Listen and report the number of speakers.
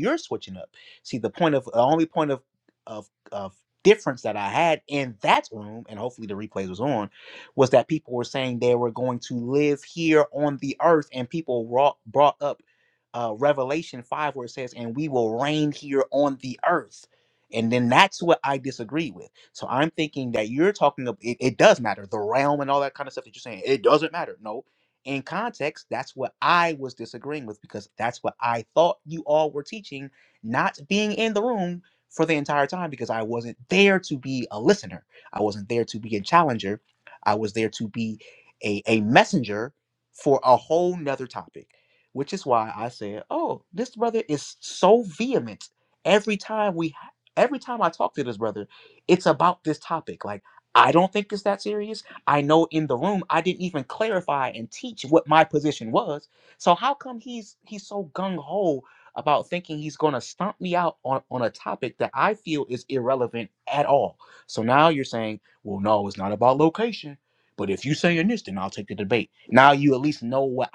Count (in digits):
1